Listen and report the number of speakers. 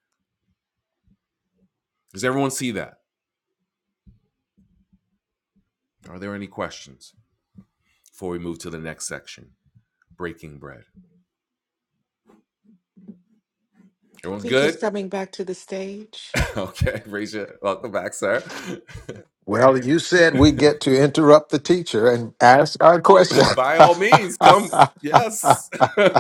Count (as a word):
three